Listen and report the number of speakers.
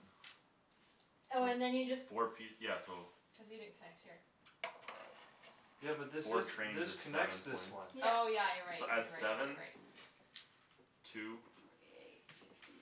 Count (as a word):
four